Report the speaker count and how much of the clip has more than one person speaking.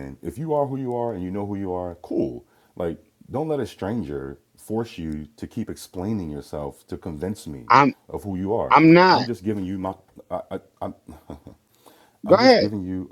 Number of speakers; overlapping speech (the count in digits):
2, about 5%